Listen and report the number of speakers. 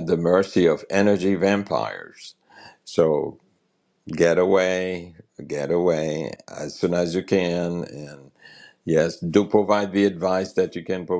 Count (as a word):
one